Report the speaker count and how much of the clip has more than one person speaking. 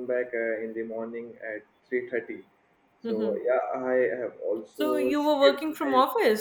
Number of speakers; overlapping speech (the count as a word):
two, about 24%